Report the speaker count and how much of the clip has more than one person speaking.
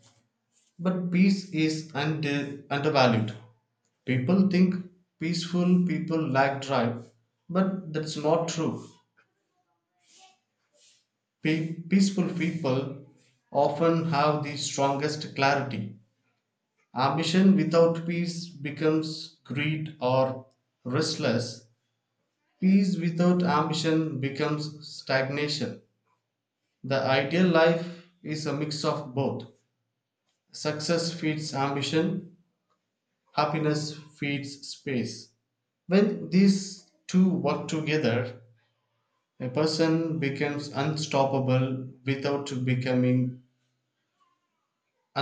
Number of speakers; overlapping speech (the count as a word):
one, no overlap